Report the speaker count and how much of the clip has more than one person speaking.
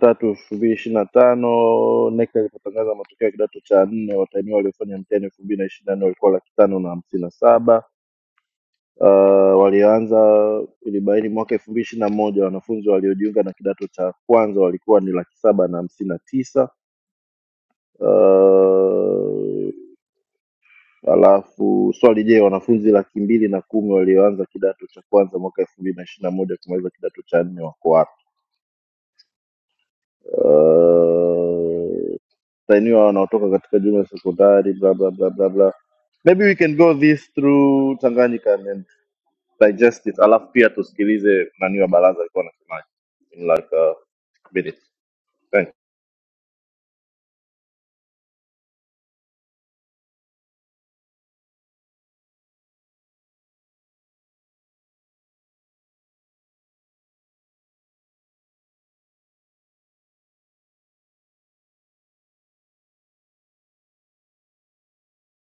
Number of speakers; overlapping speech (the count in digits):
1, no overlap